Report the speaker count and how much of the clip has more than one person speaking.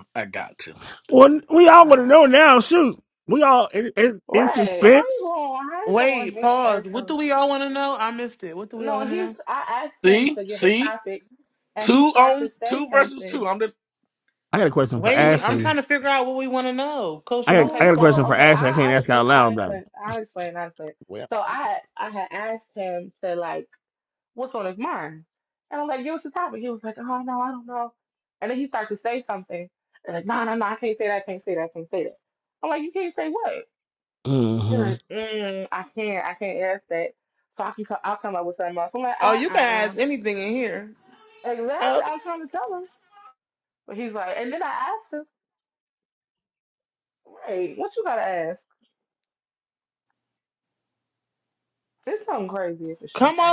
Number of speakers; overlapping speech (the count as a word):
four, about 19%